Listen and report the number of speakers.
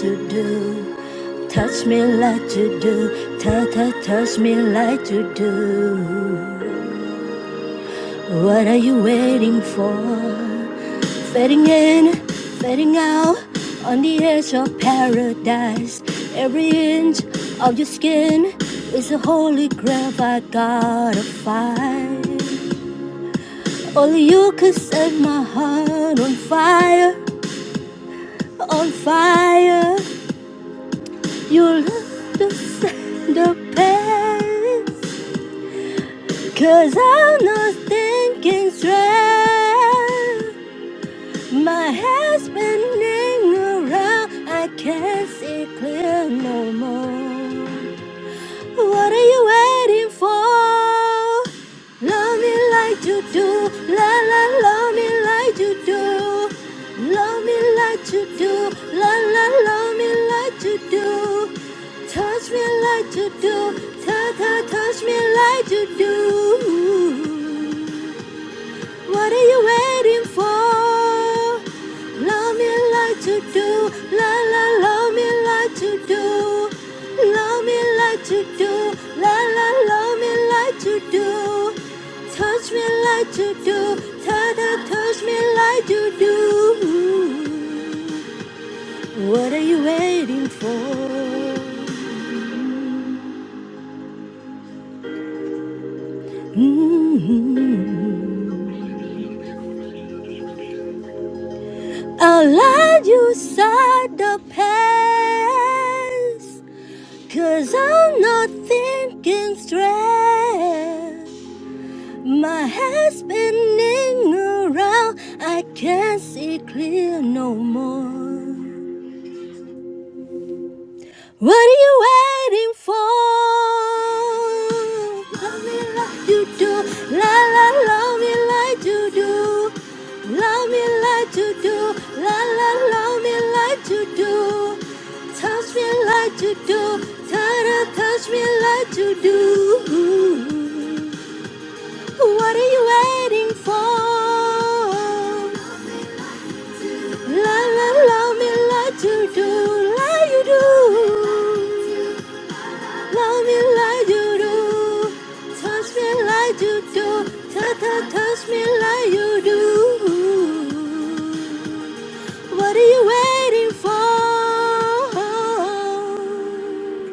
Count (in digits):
1